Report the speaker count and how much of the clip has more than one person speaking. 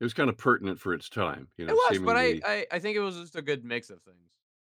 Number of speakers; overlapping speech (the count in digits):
2, about 16%